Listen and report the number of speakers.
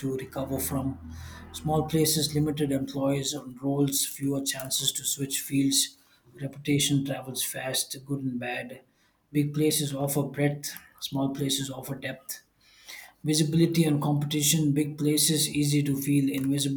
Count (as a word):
one